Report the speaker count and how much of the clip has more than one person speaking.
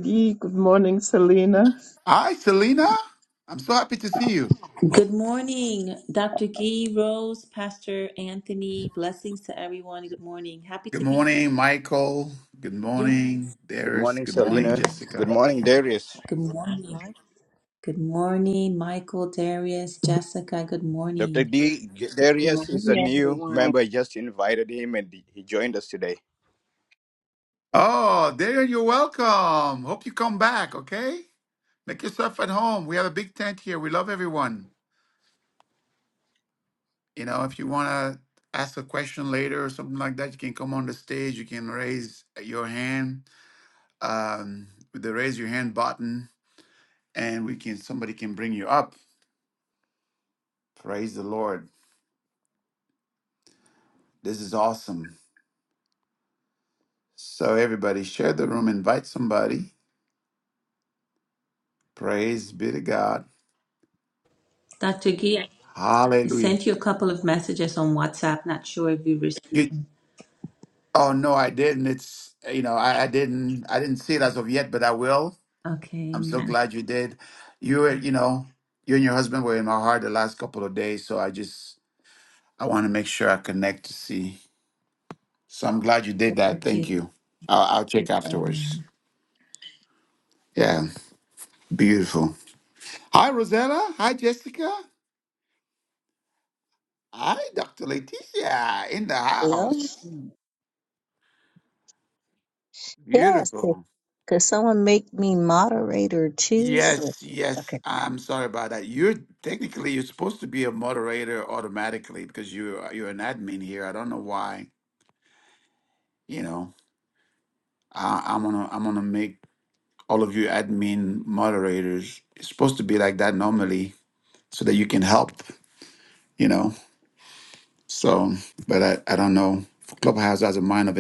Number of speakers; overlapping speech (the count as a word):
five, about 6%